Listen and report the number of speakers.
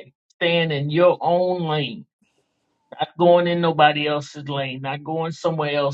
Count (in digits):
1